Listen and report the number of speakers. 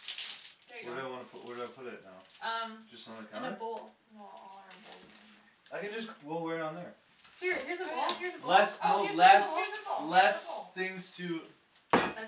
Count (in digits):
3